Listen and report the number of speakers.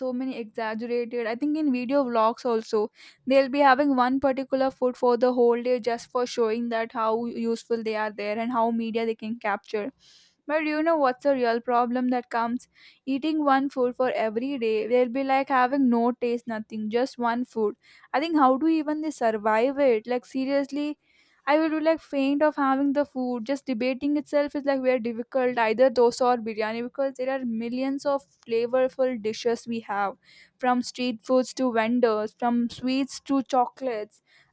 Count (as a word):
one